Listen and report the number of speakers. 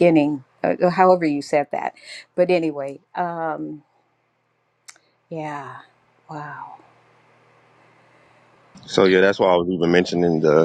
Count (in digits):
2